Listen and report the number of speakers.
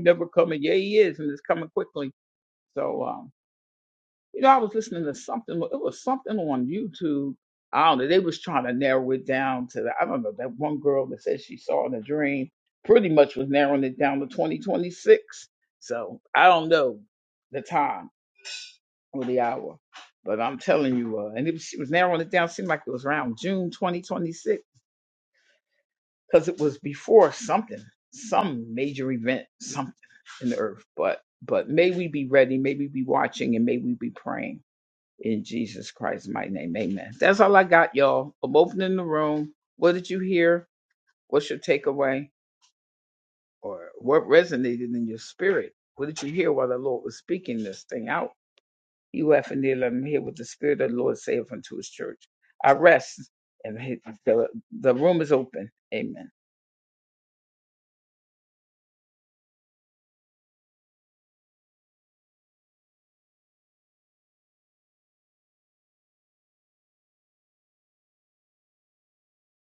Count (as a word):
one